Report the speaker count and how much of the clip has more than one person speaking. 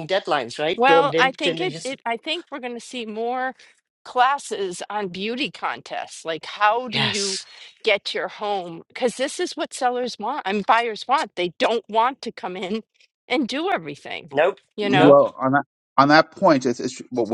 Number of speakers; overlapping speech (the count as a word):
three, about 10%